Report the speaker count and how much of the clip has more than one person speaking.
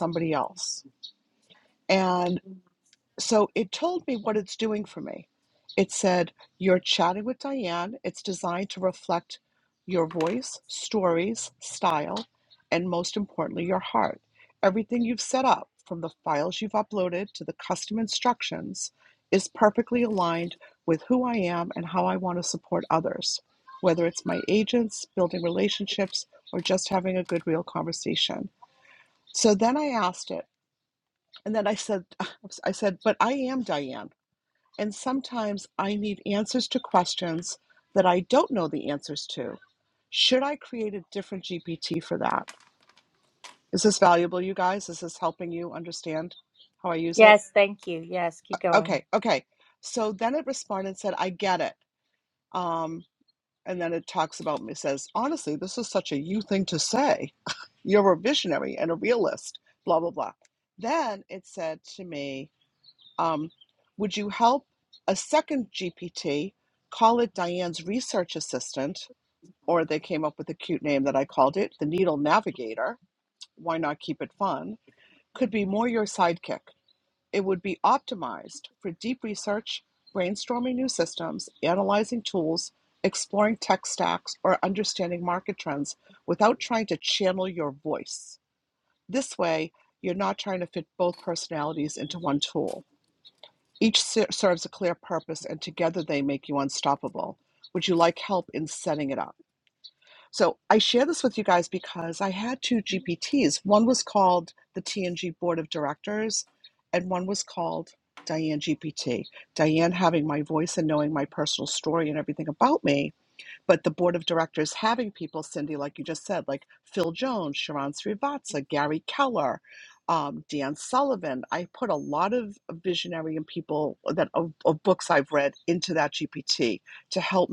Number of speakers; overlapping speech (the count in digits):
2, under 1%